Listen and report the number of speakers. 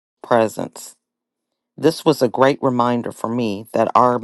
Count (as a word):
one